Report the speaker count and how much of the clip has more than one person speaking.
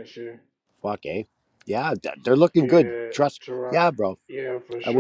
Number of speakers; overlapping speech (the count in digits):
2, about 21%